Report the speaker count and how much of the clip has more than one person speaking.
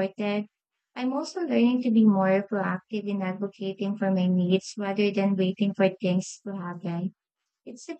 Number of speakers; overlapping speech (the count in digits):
1, no overlap